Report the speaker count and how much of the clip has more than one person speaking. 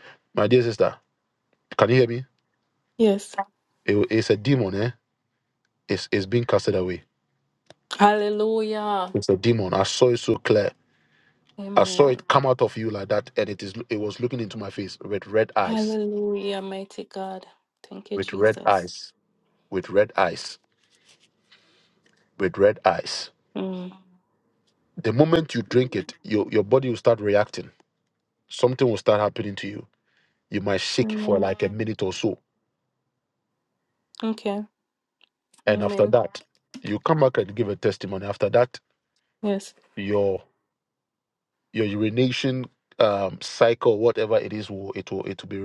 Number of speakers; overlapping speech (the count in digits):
2, about 5%